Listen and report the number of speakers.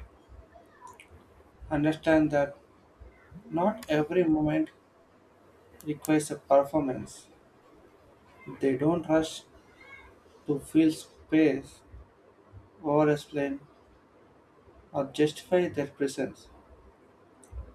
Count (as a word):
one